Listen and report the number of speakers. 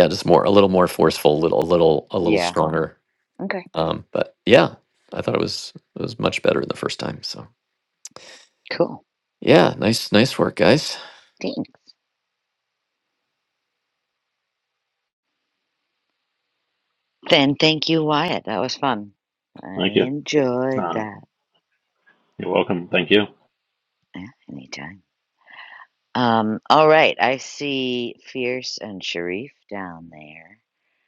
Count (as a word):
three